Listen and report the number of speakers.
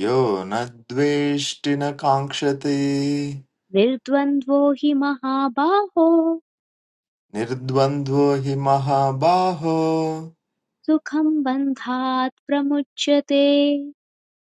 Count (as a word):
two